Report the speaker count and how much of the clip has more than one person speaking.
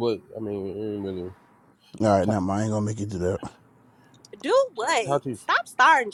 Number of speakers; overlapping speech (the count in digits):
3, about 2%